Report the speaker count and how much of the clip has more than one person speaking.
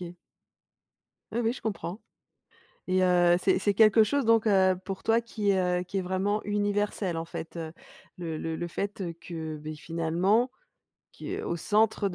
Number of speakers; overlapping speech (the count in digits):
1, no overlap